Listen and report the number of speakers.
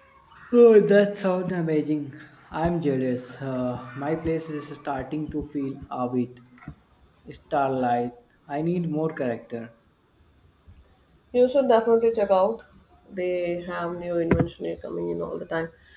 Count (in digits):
2